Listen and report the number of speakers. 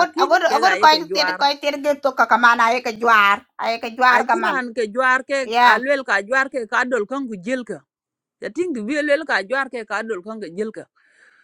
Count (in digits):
2